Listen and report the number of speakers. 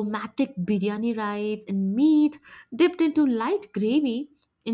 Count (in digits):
1